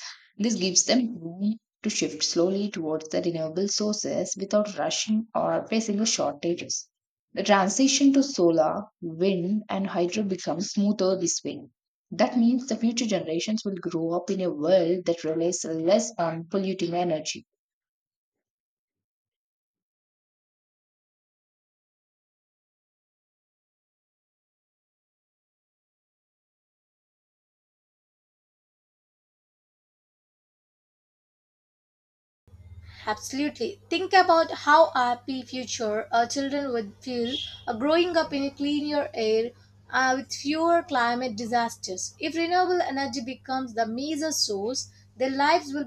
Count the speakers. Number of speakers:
2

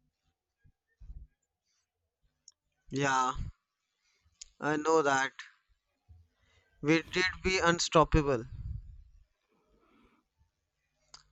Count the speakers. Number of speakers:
1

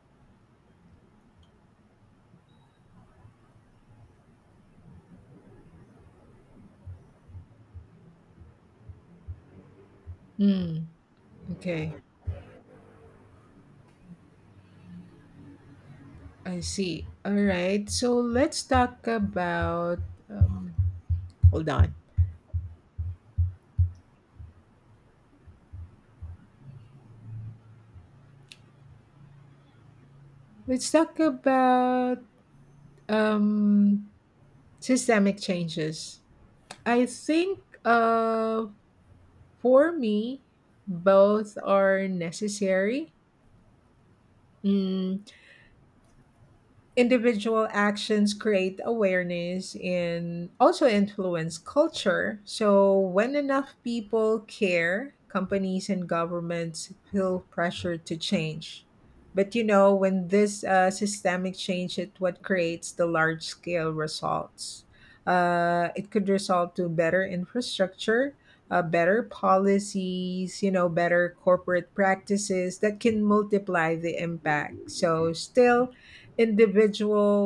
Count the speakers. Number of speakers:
1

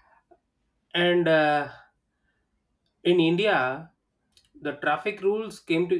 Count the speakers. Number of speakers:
1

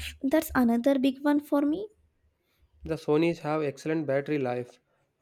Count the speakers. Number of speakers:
2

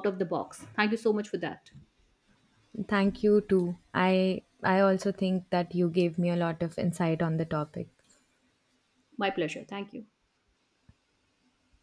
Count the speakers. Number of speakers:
2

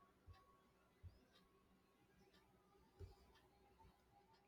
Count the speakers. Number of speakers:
0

